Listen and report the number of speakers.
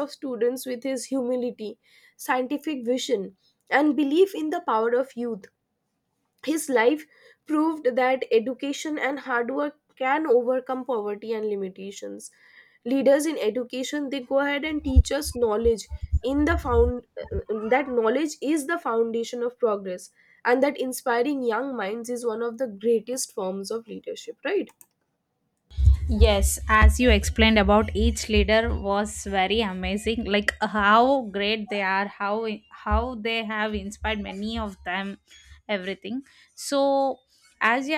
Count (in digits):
2